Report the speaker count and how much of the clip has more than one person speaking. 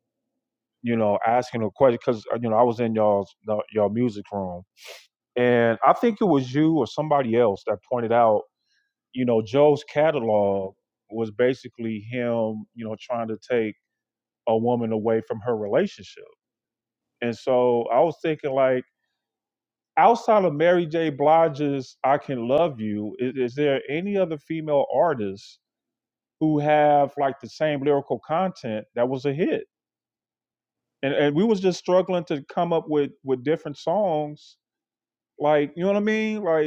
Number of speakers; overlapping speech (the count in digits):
1, no overlap